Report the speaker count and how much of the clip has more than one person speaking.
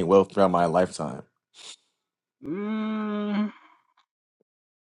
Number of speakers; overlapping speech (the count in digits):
2, no overlap